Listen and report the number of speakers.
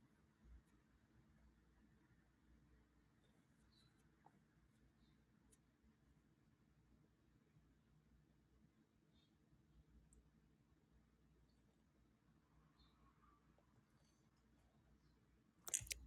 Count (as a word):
zero